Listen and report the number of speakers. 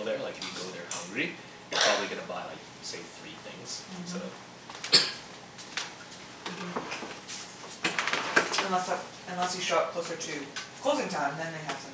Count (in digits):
2